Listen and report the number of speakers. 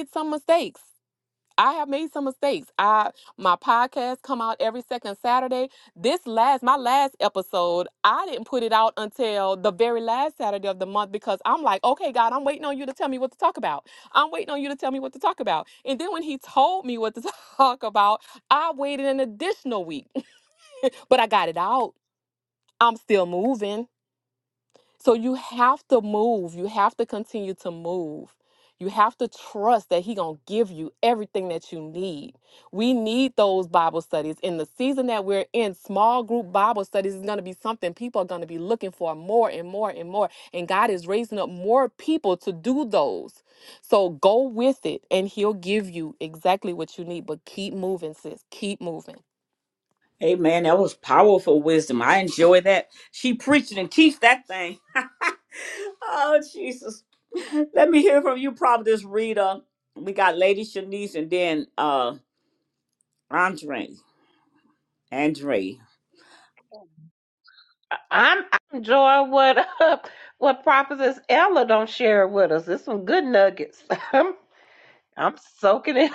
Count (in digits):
3